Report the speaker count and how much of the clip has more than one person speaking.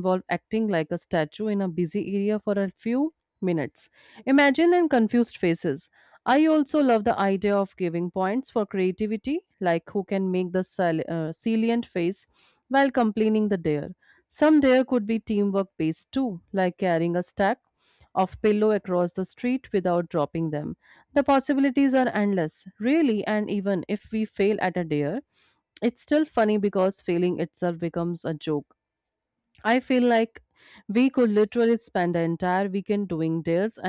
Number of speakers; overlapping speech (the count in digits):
1, no overlap